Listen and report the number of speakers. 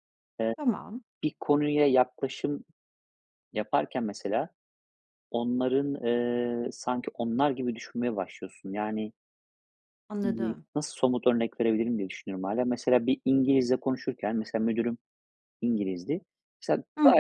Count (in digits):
2